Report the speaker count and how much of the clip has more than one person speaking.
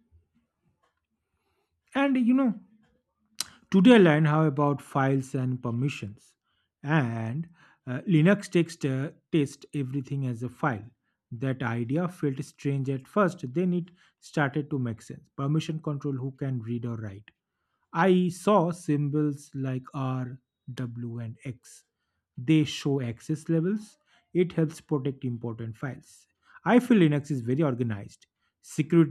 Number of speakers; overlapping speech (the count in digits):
1, no overlap